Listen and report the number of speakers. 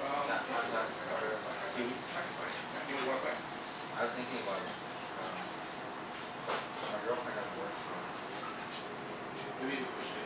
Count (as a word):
two